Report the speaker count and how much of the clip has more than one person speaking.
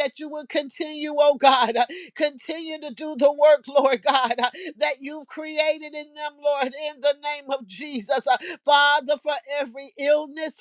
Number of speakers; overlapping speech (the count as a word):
one, no overlap